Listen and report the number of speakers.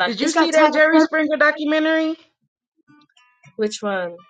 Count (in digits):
2